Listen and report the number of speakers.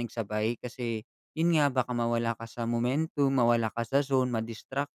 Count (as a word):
one